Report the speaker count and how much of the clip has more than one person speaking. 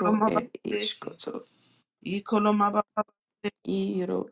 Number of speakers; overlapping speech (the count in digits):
2, about 26%